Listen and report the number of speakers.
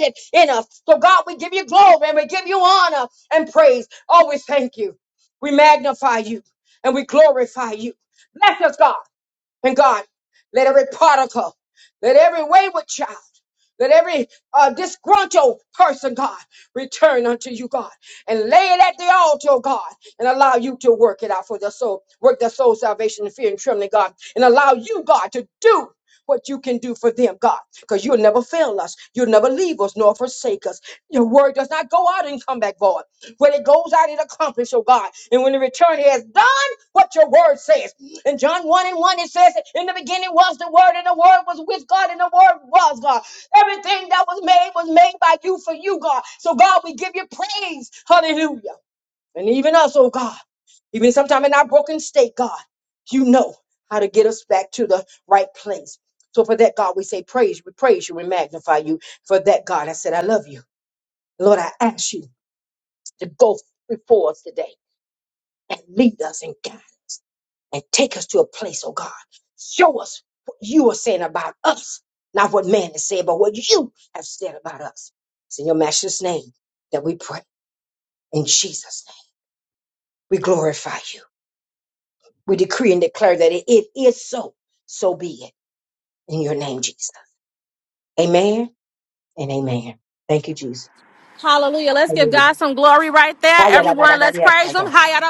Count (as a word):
two